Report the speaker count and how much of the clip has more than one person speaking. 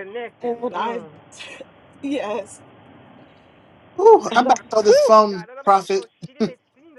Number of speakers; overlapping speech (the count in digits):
3, about 30%